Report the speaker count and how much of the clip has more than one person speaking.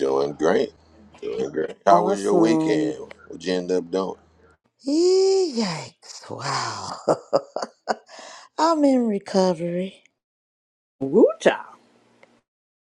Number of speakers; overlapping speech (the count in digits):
3, about 8%